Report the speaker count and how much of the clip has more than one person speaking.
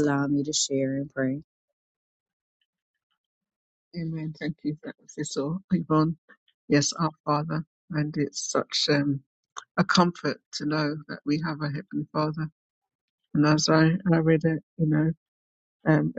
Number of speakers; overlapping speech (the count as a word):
two, no overlap